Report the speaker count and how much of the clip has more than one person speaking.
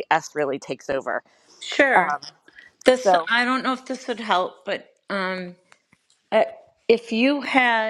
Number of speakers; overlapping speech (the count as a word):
two, about 6%